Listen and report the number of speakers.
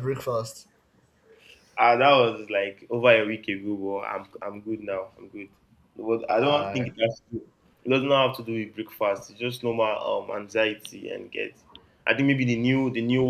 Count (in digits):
2